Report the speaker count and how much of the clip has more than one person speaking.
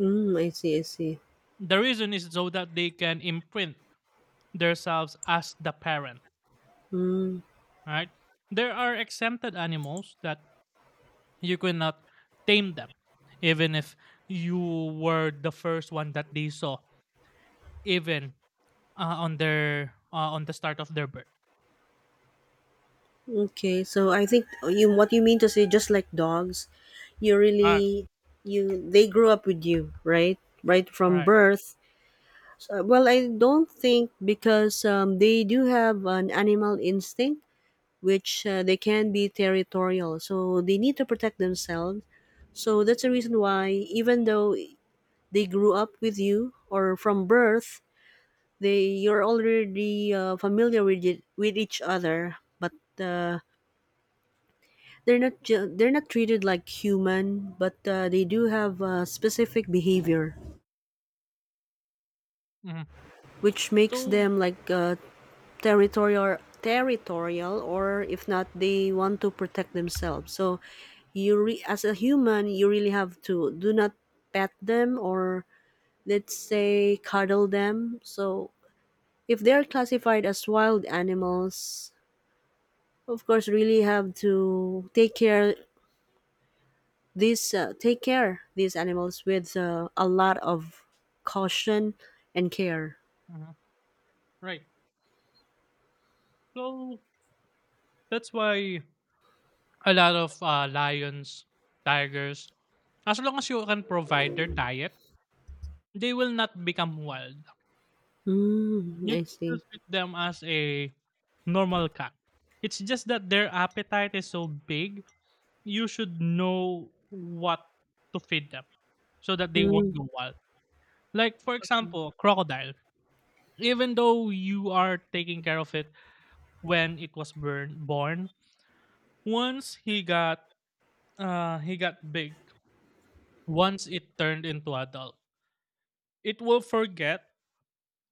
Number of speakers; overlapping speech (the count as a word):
two, about 1%